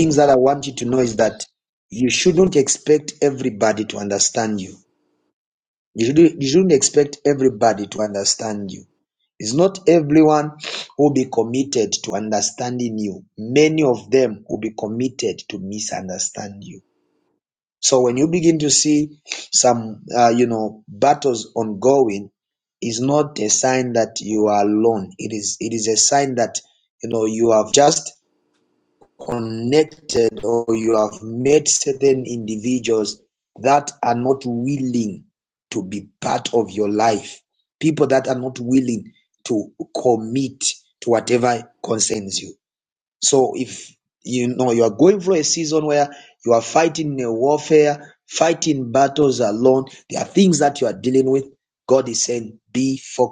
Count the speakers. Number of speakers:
1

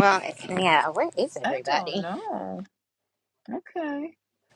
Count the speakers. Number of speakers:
2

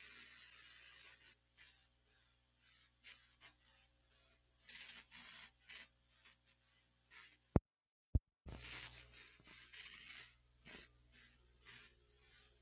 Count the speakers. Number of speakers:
0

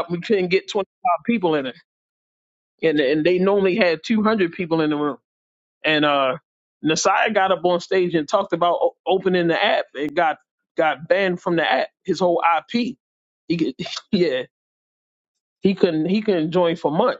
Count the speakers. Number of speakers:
1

